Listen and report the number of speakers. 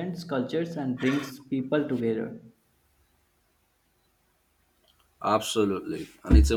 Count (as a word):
two